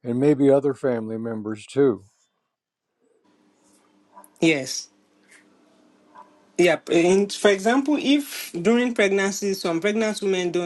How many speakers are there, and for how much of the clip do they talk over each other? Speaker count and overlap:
2, no overlap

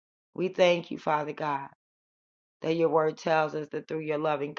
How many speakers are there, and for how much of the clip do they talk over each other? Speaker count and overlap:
1, no overlap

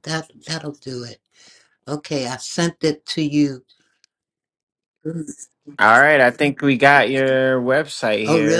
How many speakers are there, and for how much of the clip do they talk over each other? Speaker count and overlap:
2, about 4%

